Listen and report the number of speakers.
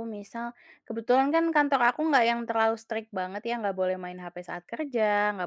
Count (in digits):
1